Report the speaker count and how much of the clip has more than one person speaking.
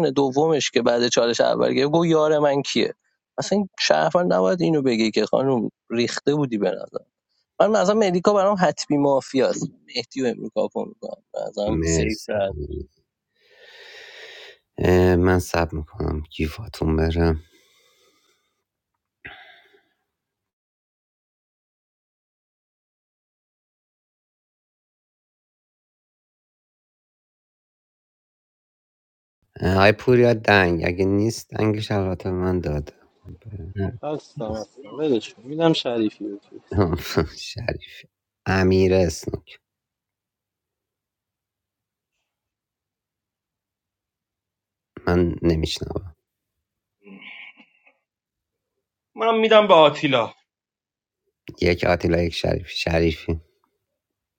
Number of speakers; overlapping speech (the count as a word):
four, about 1%